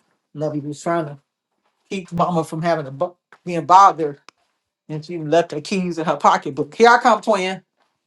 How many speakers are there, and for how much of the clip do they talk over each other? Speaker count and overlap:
1, no overlap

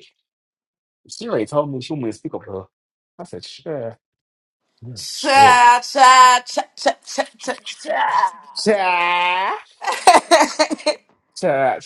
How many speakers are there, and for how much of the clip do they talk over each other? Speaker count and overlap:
2, about 3%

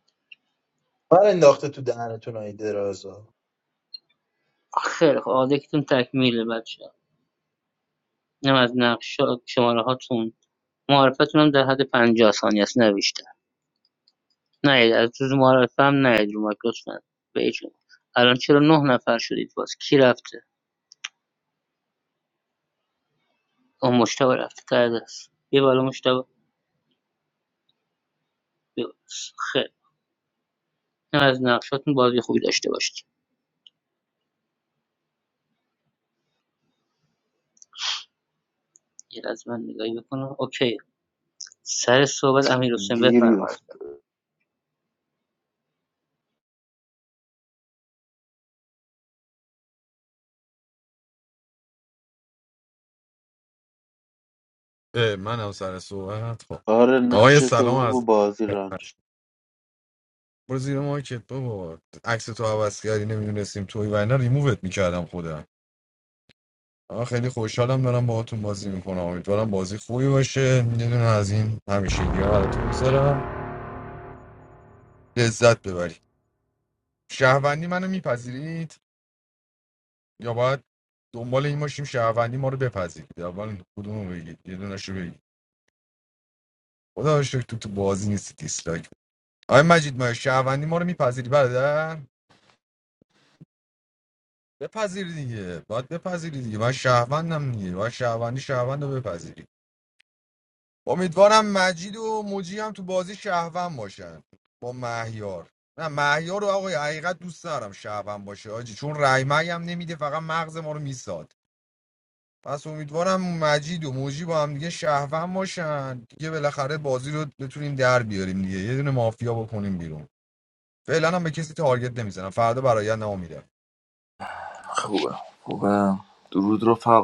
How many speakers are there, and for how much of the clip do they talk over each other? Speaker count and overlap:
5, about 1%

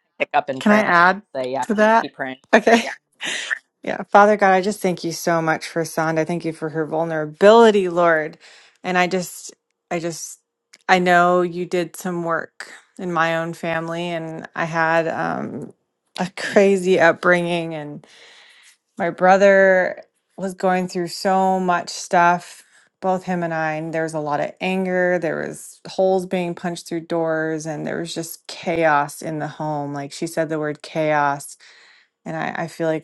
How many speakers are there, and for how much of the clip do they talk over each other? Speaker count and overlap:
2, about 2%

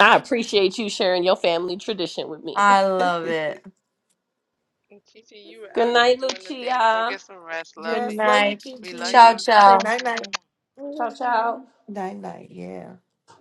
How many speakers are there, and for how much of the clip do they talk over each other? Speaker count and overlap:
4, about 24%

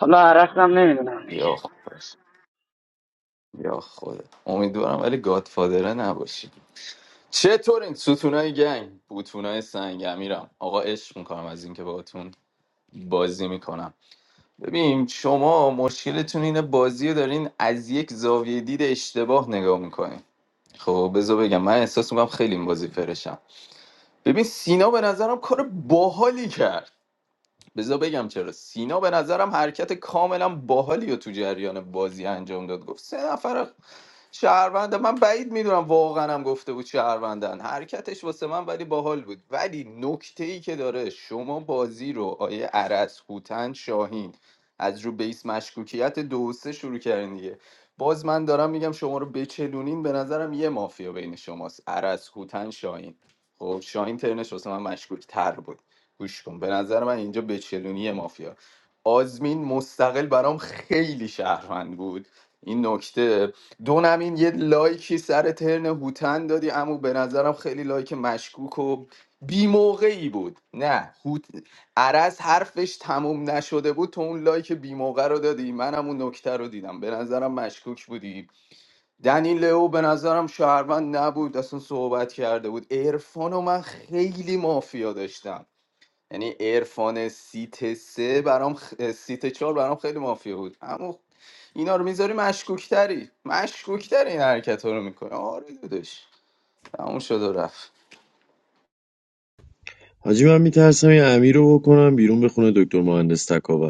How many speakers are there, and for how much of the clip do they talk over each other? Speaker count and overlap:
3, under 1%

